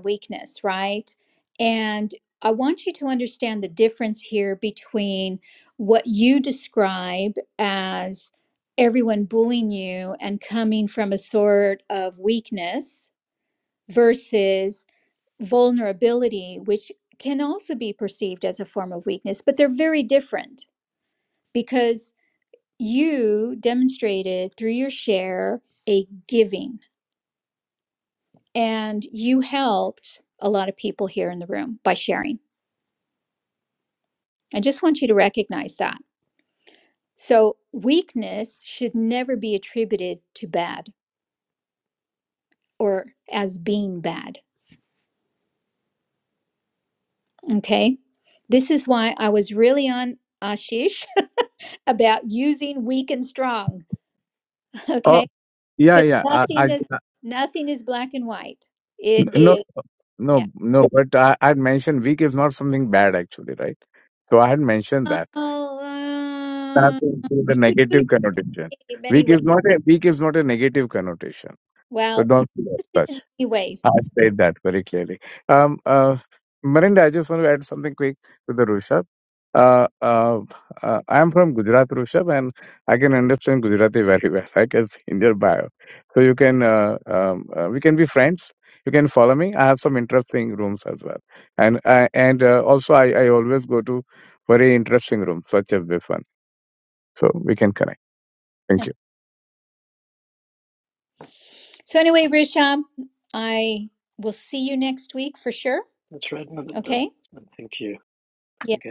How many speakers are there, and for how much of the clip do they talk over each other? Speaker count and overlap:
3, about 3%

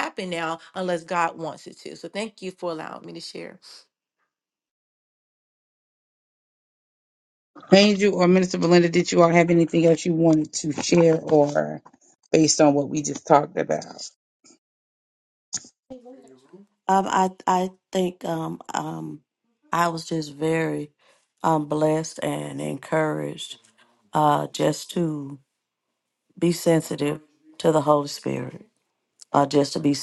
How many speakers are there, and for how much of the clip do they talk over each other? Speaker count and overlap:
3, no overlap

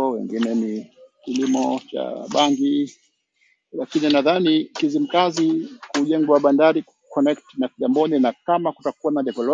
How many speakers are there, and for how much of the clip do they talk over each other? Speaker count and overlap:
1, no overlap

